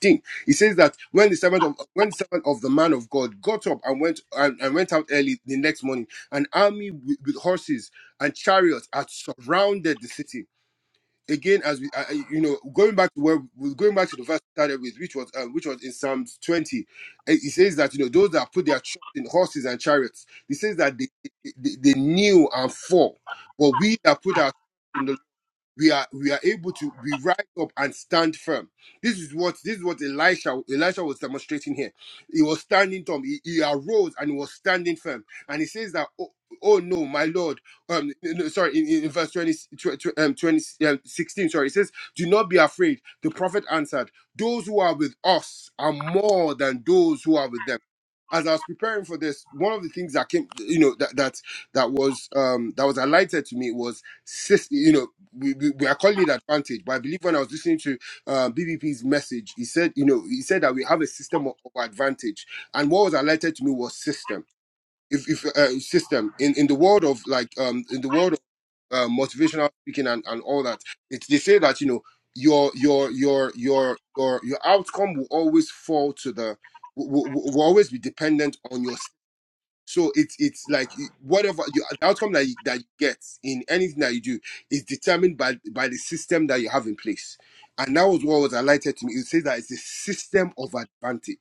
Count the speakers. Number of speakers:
1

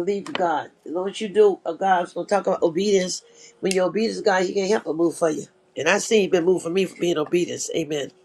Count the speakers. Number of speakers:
1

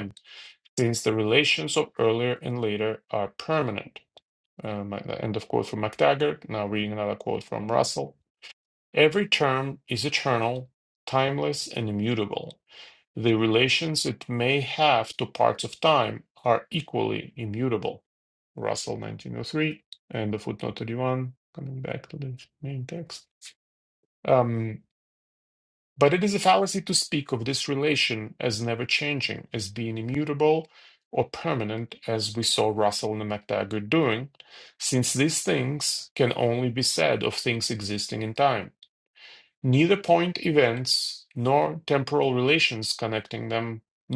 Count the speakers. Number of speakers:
1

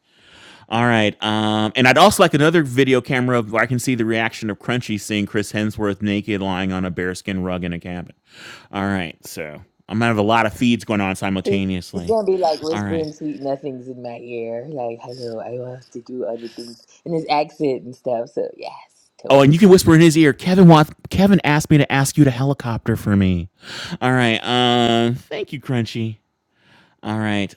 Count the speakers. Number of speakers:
2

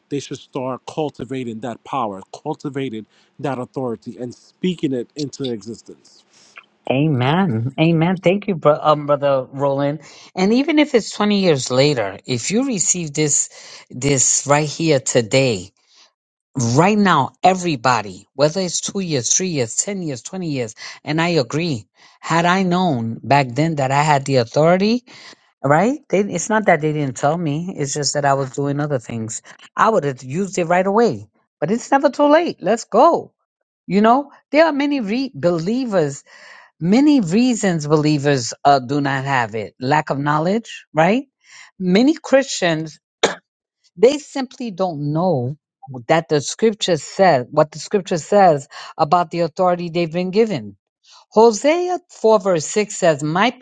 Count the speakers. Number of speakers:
2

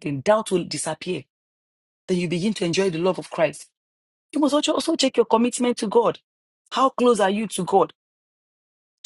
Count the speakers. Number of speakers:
1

